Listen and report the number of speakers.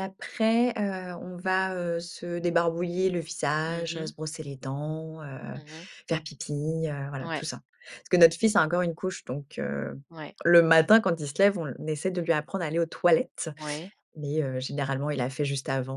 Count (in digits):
2